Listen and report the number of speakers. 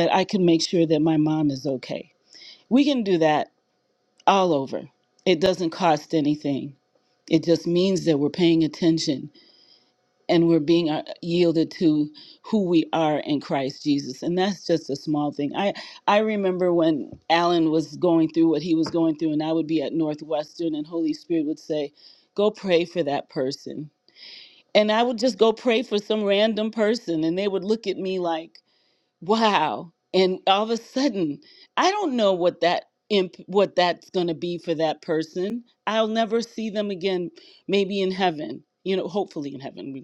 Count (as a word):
one